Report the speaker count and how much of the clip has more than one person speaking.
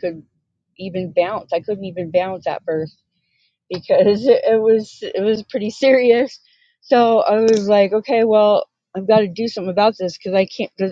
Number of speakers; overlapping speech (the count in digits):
1, no overlap